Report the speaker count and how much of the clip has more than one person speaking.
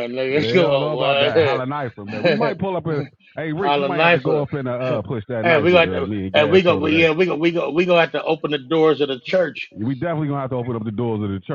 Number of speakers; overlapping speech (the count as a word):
two, about 28%